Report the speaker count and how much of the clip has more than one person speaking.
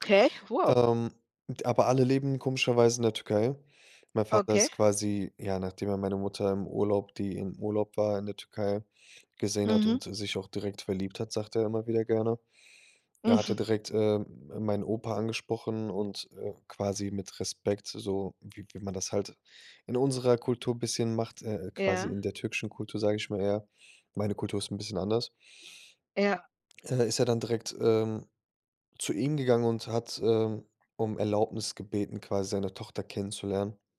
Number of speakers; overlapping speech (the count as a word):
two, about 5%